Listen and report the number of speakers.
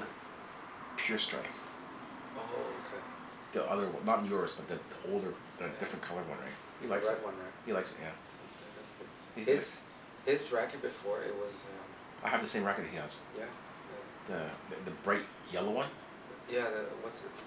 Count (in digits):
2